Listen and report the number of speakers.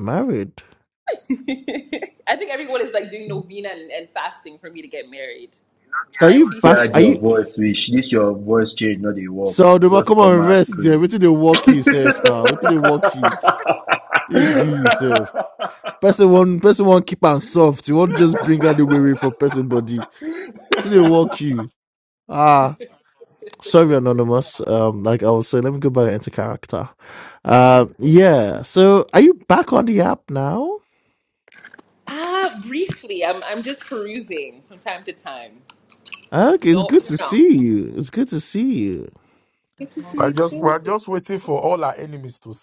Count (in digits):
4